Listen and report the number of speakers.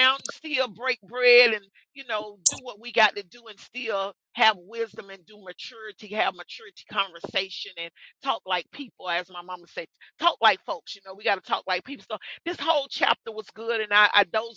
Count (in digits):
1